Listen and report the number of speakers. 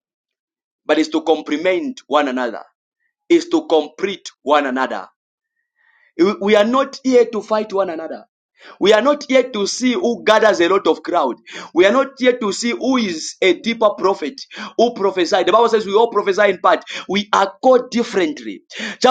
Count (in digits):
1